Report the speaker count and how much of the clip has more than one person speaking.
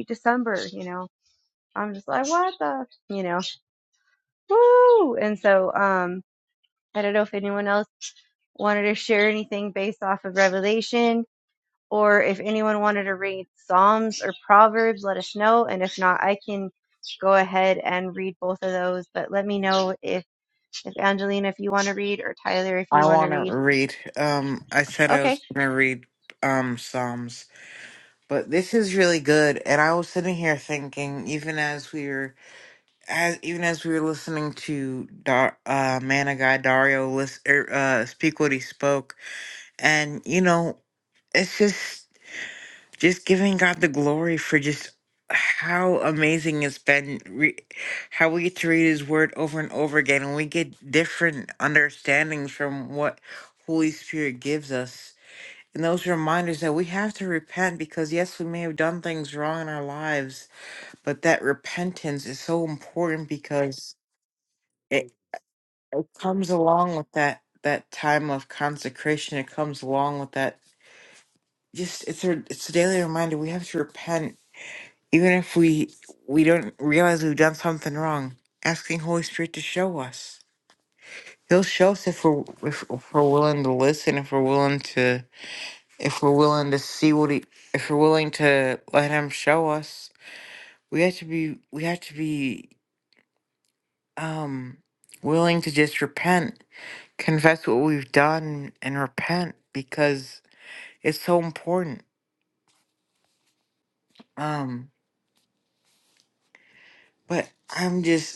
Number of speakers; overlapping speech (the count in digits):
2, about 1%